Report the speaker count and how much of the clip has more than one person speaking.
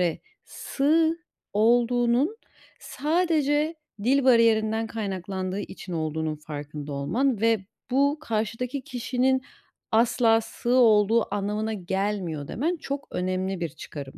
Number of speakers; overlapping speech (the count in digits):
1, no overlap